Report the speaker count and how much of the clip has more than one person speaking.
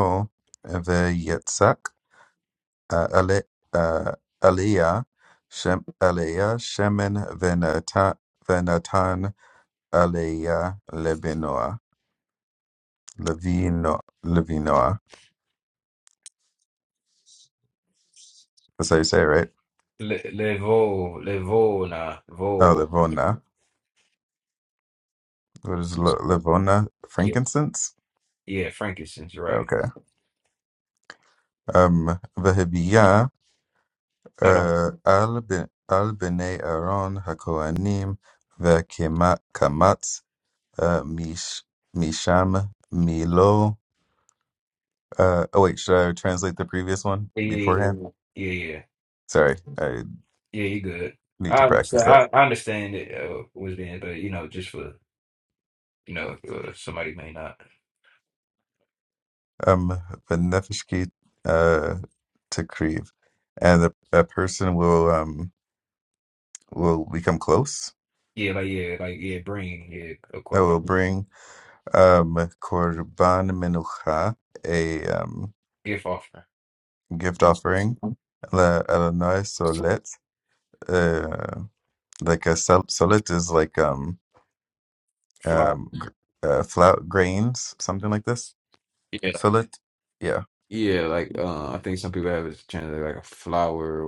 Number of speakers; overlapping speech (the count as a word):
two, about 3%